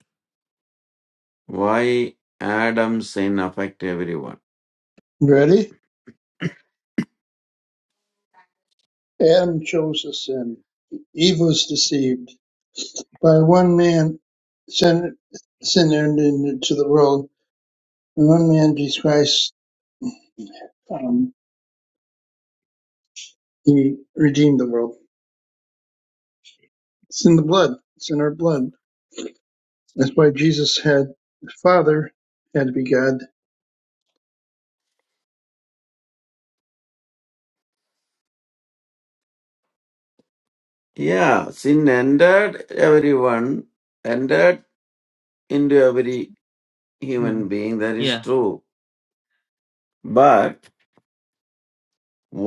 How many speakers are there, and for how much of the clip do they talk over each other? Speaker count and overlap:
two, no overlap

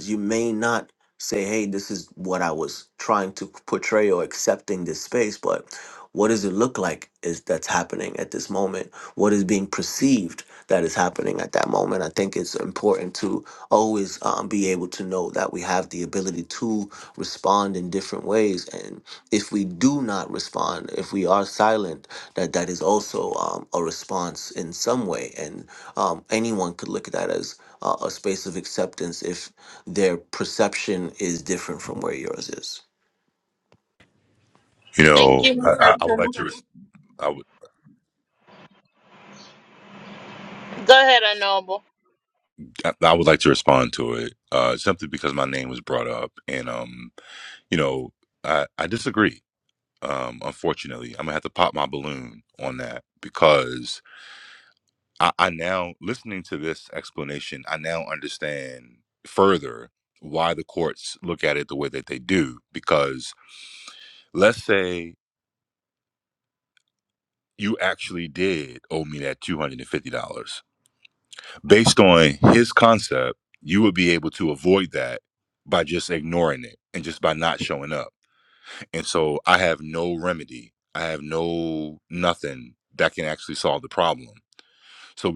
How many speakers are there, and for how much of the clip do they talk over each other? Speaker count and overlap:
three, about 1%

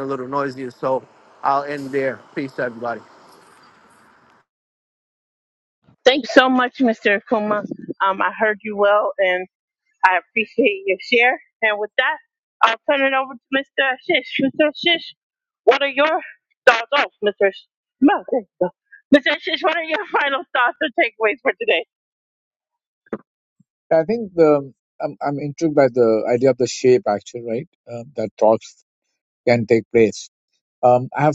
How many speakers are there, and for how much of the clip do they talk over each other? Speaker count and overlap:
three, no overlap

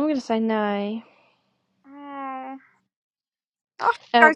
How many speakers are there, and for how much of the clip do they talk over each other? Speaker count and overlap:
two, about 6%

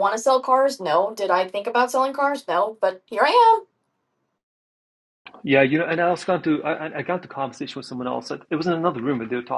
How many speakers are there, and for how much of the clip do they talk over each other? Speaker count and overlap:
two, no overlap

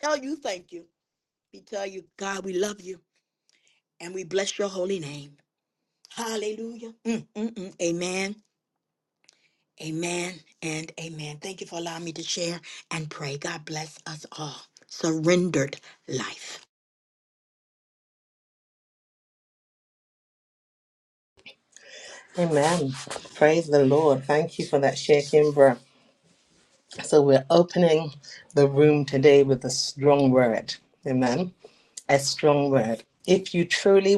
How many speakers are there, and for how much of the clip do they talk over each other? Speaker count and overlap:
two, no overlap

